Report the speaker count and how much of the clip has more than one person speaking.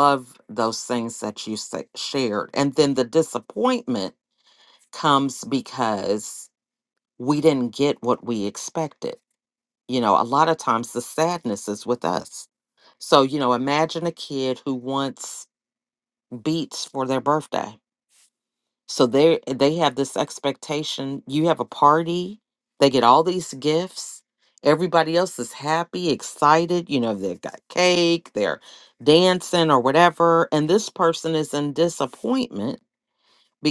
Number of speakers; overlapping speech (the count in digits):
1, no overlap